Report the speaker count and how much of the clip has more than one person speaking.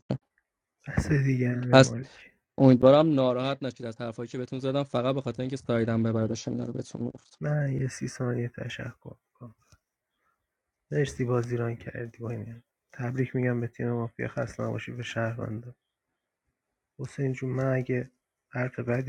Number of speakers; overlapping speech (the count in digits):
2, about 1%